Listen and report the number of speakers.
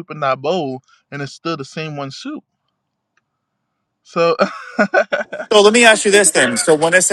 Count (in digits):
2